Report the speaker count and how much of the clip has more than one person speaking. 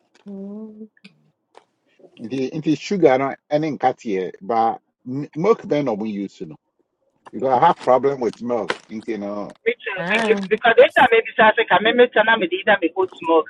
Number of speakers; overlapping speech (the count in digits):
3, about 4%